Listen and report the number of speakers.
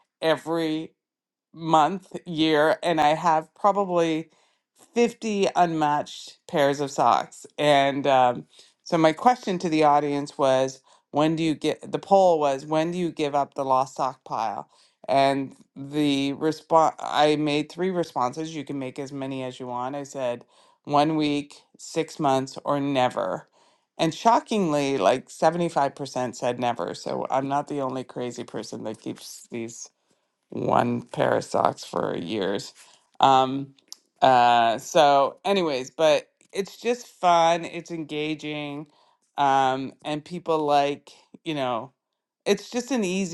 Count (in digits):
1